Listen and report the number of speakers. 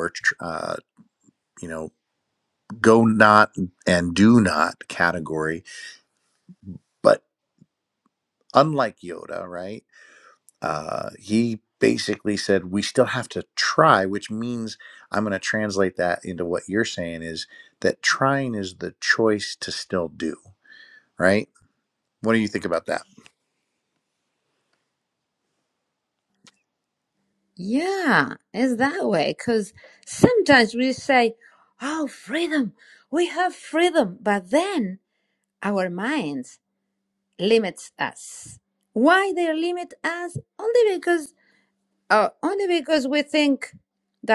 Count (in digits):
2